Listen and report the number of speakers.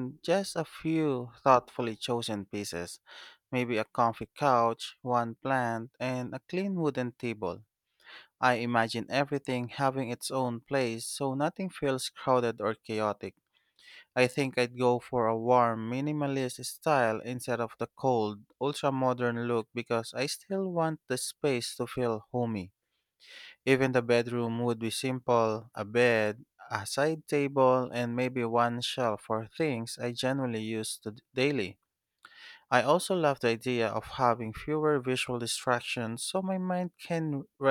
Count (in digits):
1